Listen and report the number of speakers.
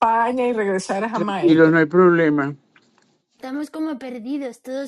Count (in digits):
3